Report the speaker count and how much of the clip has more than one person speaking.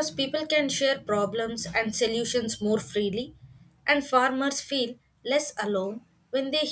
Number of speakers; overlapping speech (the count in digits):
1, no overlap